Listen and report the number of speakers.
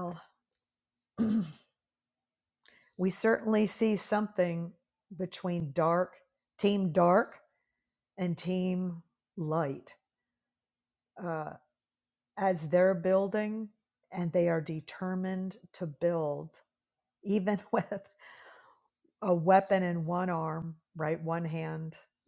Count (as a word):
one